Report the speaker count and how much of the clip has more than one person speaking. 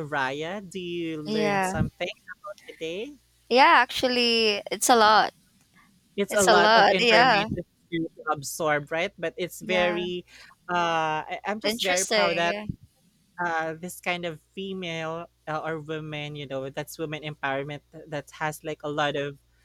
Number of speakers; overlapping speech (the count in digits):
2, about 16%